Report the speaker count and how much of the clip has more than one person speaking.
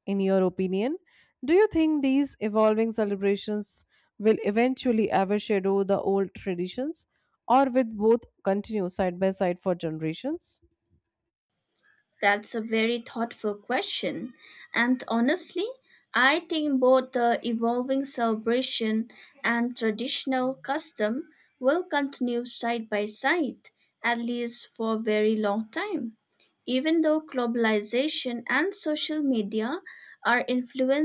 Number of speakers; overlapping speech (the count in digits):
2, no overlap